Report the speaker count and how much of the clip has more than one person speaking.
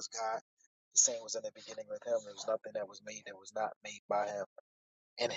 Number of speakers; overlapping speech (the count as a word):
one, no overlap